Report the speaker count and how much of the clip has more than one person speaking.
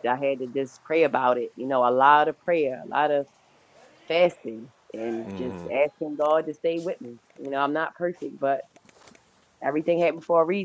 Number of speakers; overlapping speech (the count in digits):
1, no overlap